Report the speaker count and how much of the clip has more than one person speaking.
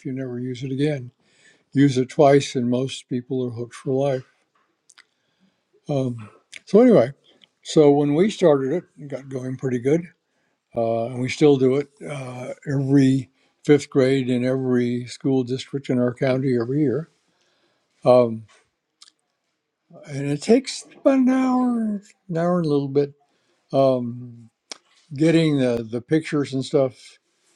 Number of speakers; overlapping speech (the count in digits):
1, no overlap